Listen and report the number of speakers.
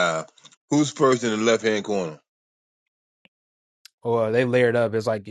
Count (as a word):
two